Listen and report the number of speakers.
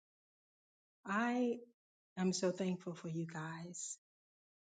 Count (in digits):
1